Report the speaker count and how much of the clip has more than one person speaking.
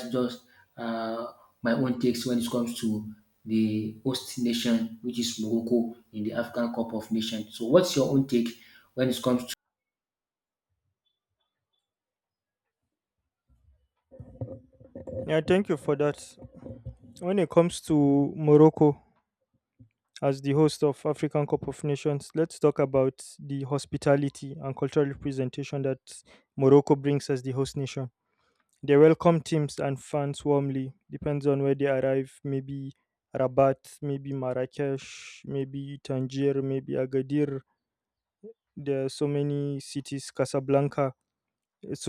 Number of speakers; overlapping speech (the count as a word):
two, no overlap